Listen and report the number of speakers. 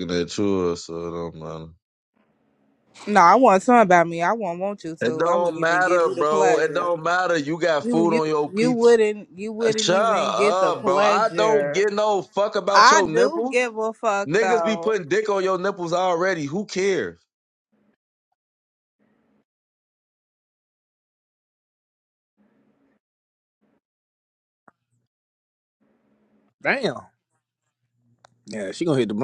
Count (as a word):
three